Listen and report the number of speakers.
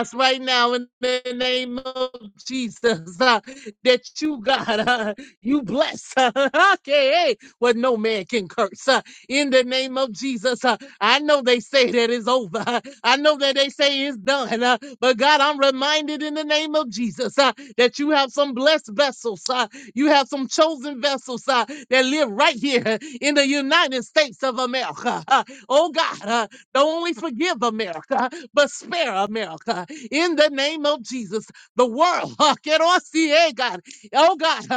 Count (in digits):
1